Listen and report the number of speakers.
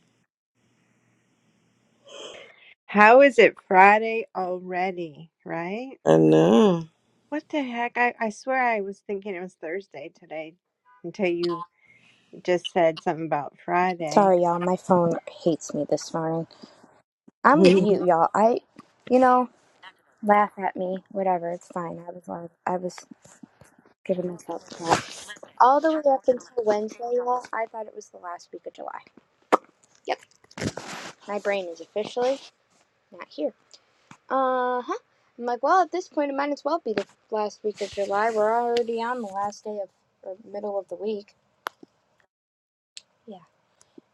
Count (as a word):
three